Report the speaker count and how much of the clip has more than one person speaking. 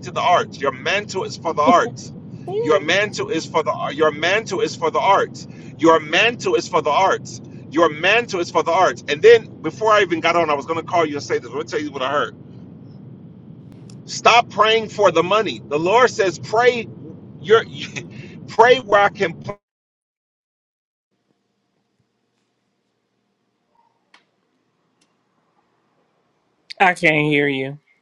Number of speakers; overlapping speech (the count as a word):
two, about 1%